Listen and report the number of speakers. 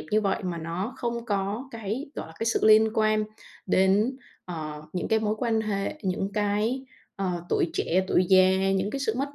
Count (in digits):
1